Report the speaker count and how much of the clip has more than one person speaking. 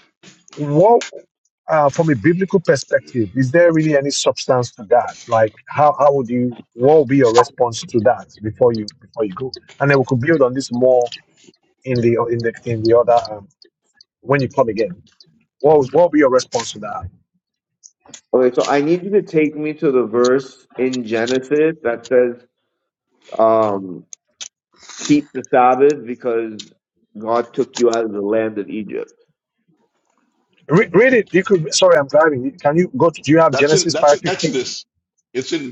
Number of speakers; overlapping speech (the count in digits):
3, about 3%